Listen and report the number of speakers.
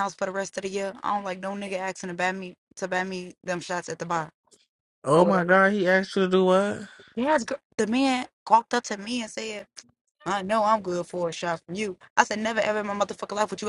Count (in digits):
2